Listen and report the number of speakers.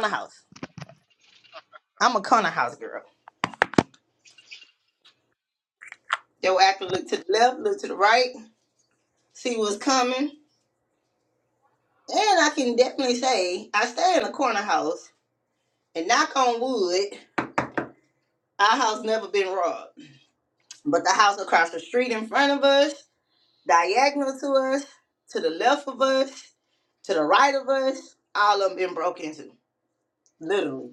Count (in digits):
1